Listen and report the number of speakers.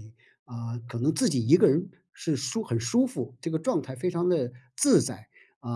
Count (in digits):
1